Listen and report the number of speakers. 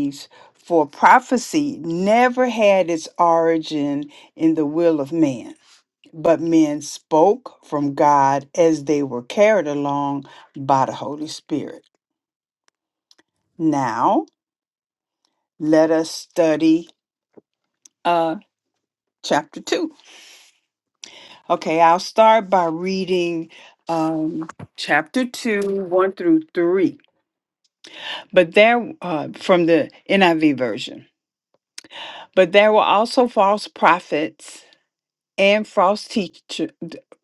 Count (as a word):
one